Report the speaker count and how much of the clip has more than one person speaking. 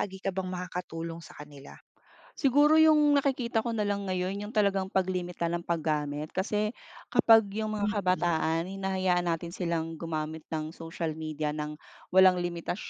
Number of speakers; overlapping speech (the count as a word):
two, about 4%